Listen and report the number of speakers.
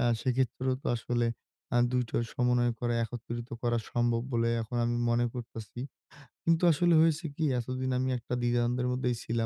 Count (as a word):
one